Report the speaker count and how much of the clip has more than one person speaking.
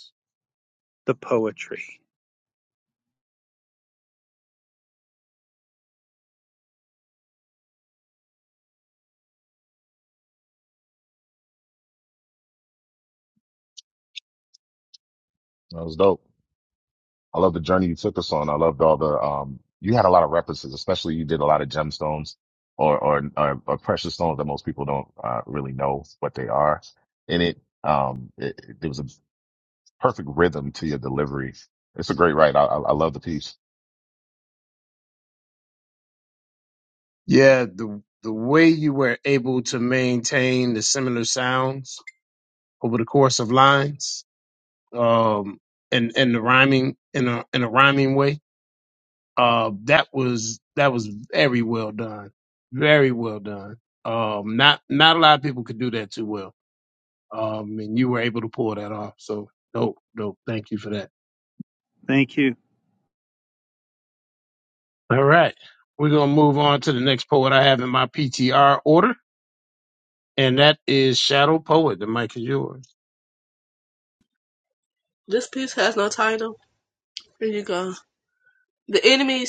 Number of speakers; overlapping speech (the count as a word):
four, no overlap